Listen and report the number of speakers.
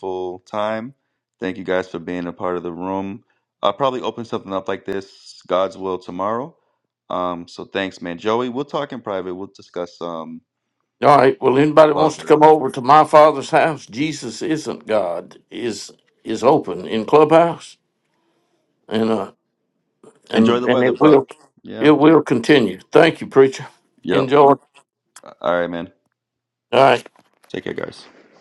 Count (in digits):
2